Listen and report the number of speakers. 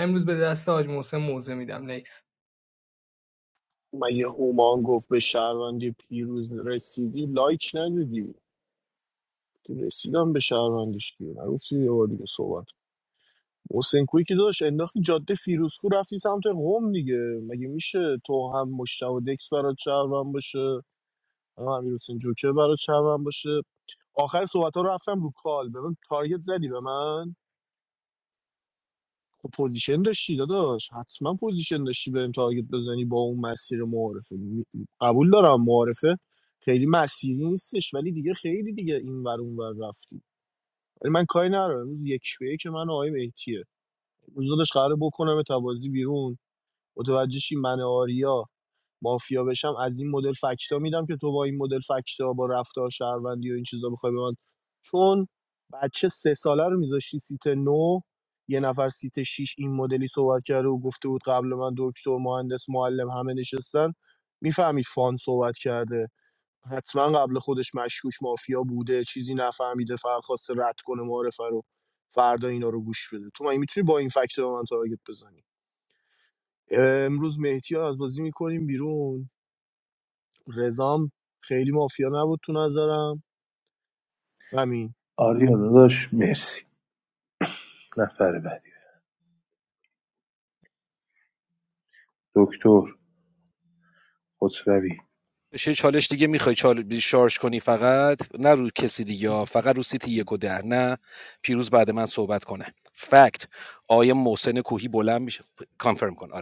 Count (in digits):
4